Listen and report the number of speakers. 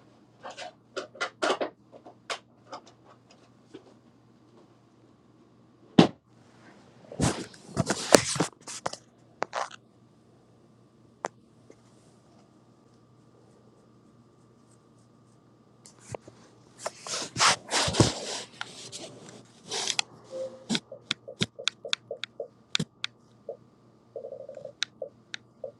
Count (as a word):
zero